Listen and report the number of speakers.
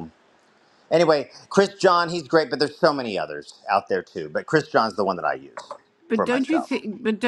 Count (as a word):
two